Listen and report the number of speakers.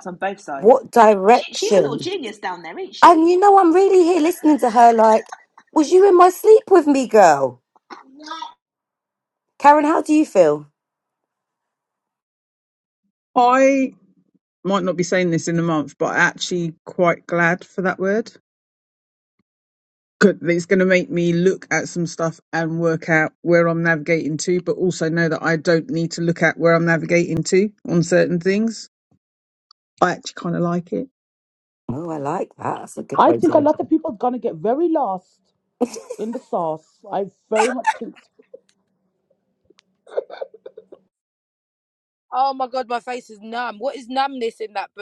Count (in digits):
5